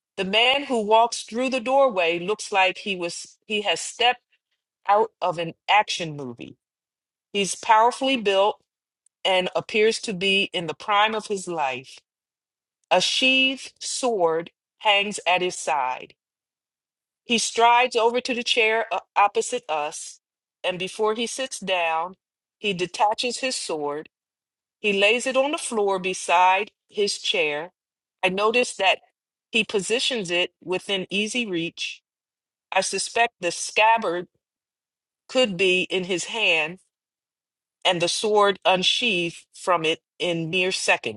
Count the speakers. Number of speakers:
1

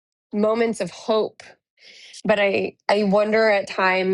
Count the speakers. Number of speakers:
1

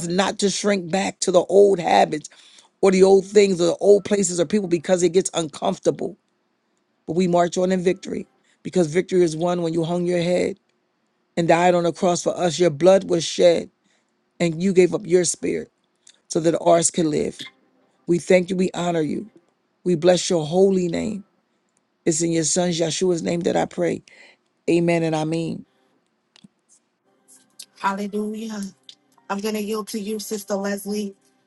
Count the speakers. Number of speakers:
2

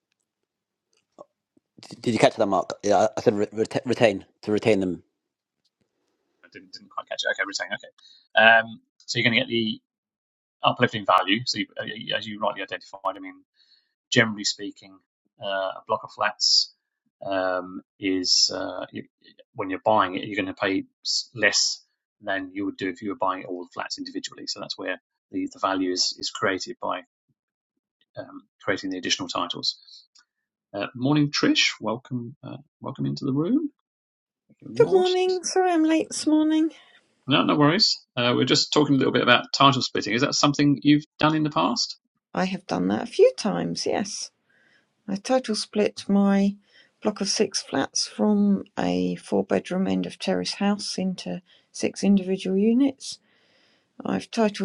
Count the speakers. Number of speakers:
3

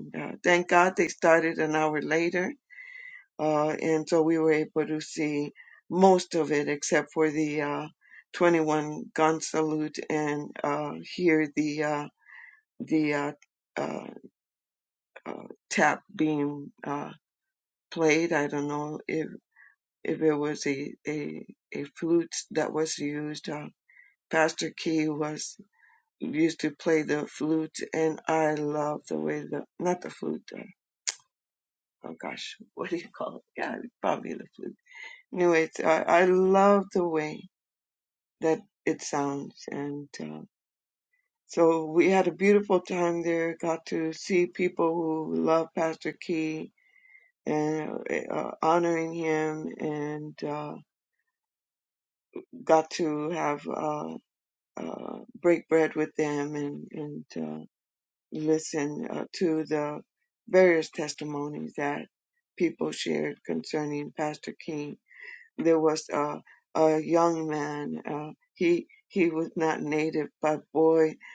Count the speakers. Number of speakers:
1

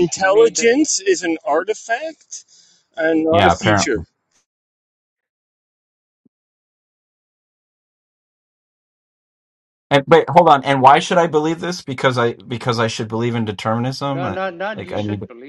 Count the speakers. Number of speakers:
3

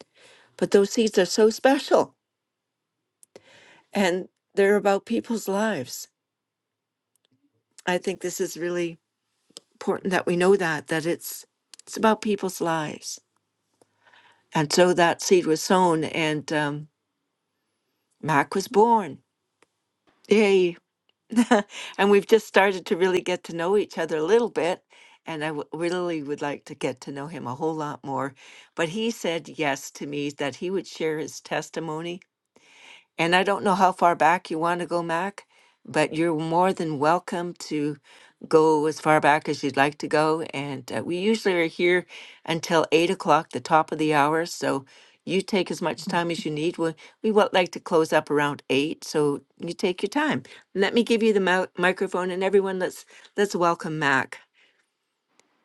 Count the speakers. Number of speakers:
1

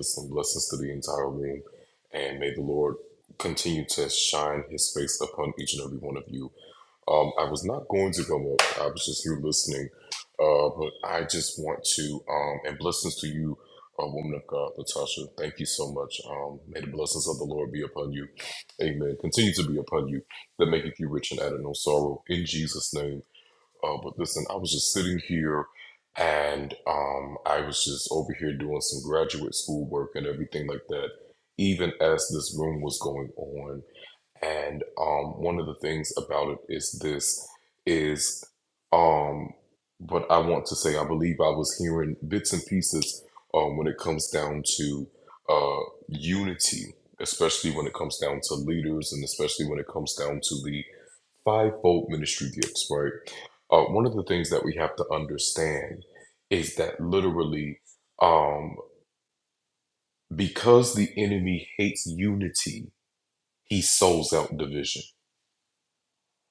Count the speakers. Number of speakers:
1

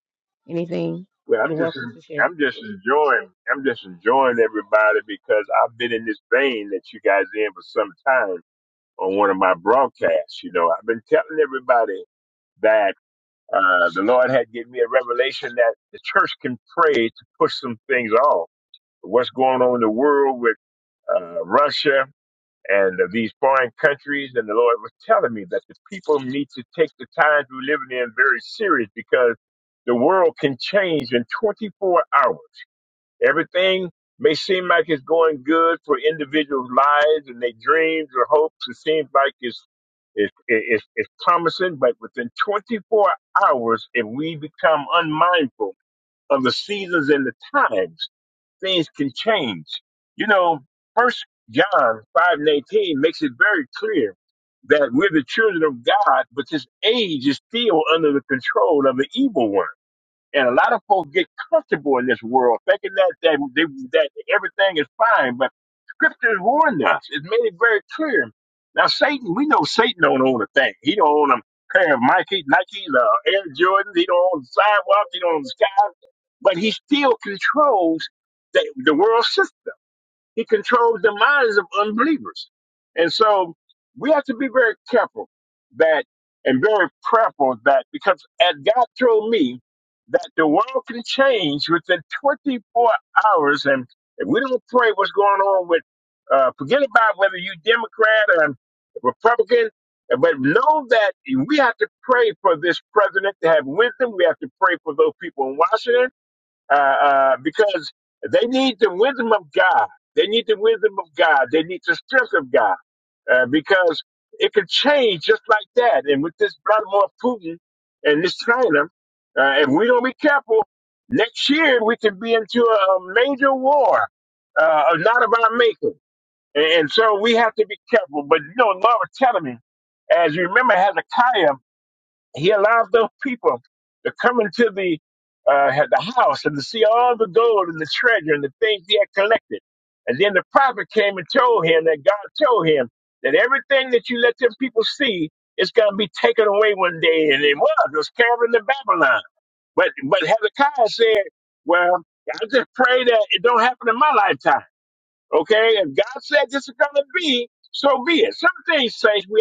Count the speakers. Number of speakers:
2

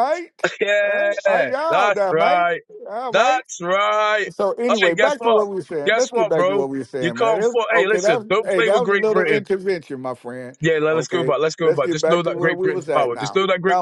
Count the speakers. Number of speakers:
2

